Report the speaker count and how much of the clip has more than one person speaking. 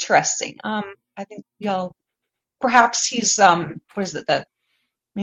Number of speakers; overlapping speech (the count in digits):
1, no overlap